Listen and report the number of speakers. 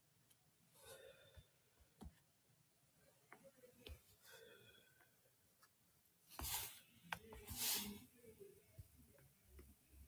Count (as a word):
zero